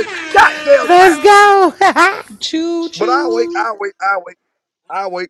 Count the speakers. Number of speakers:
three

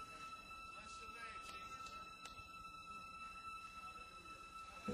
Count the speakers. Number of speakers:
zero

